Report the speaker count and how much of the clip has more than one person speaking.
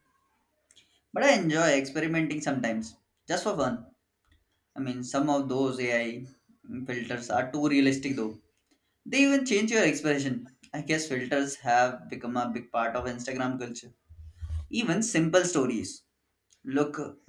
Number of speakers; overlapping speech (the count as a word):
one, no overlap